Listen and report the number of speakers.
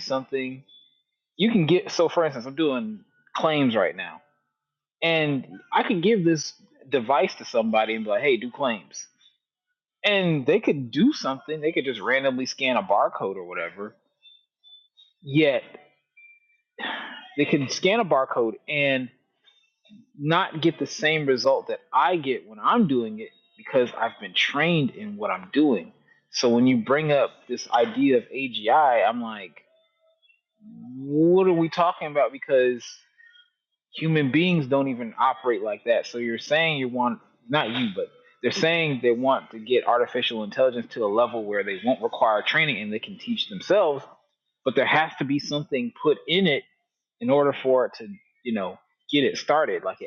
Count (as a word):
one